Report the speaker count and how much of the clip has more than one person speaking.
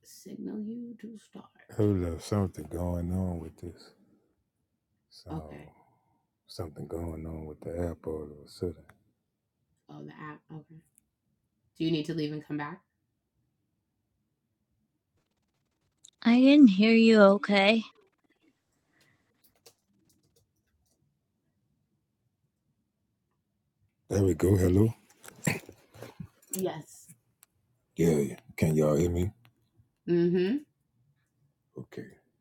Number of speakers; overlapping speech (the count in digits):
3, about 1%